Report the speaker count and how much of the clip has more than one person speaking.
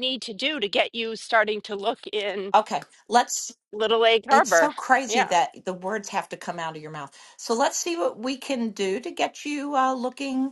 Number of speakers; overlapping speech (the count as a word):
two, about 6%